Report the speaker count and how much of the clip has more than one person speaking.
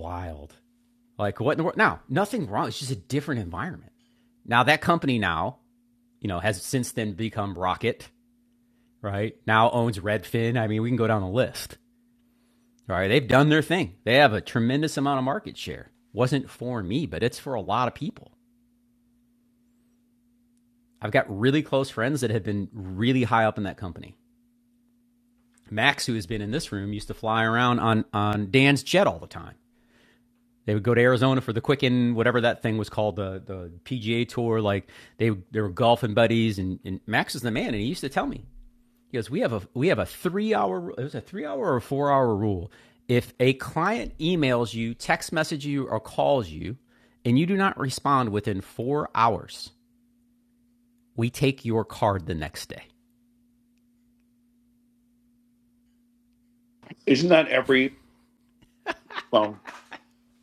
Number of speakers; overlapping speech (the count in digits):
2, no overlap